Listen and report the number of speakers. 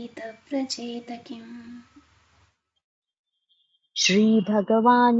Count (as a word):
two